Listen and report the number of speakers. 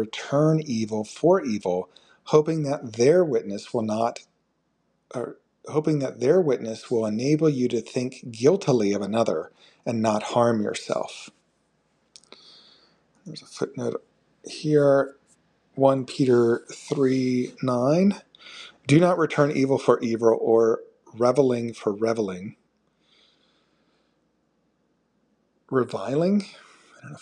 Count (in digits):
1